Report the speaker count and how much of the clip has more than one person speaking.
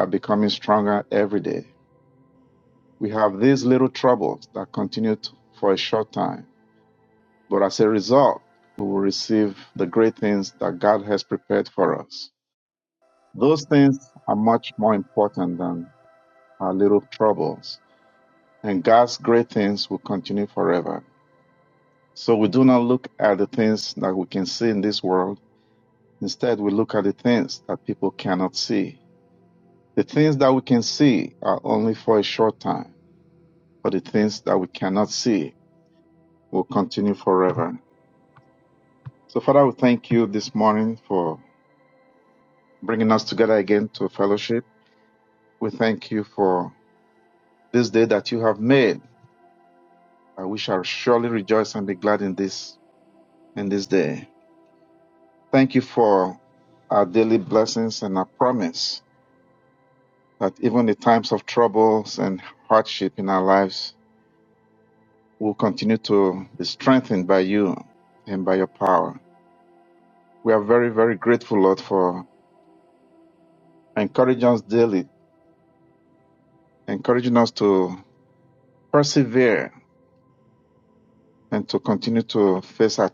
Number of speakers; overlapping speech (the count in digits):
1, no overlap